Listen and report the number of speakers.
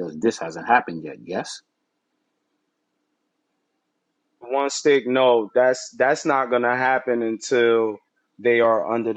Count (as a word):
two